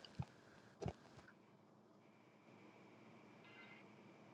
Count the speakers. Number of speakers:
0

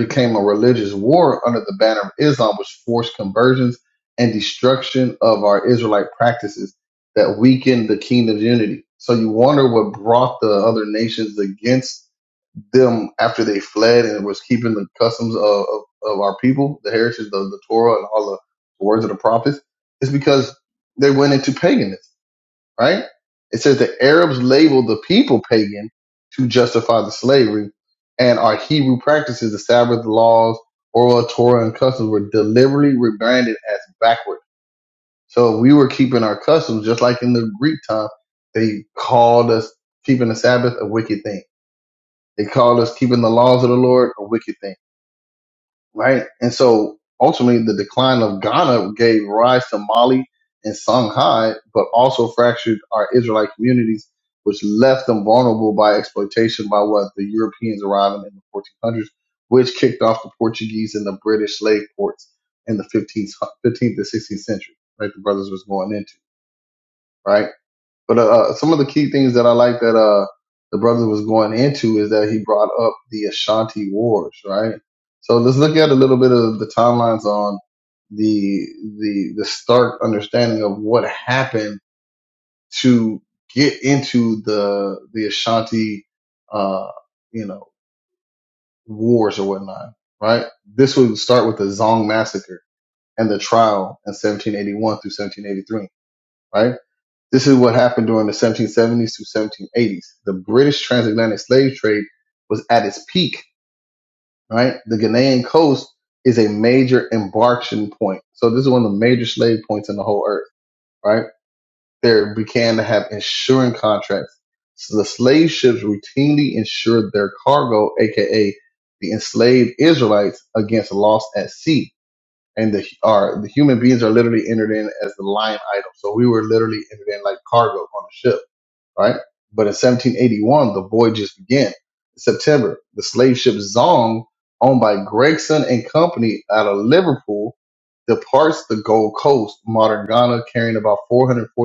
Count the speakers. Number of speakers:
1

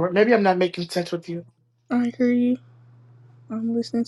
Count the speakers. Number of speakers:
2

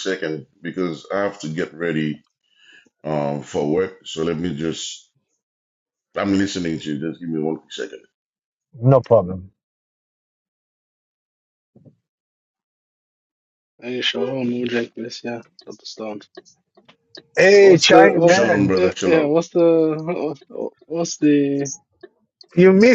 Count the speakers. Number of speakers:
3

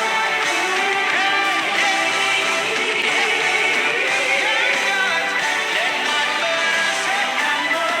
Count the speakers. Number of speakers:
0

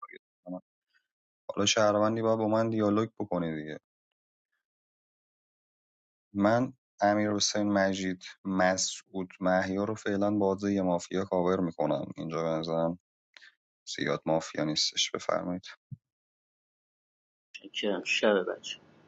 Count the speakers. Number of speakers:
2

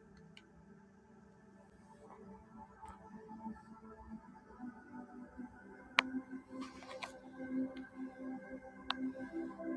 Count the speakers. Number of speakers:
0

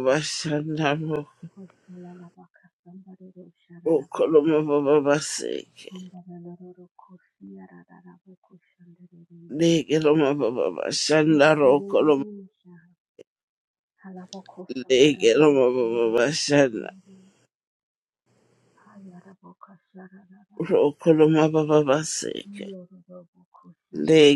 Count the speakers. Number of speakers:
2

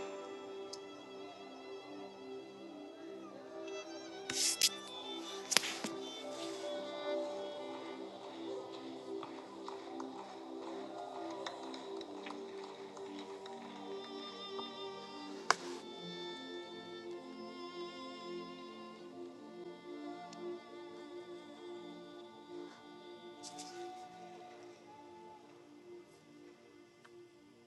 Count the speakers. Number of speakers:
0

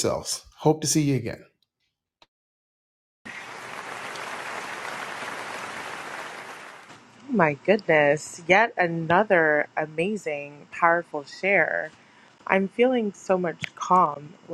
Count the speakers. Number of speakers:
2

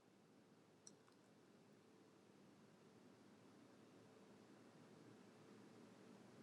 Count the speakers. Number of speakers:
0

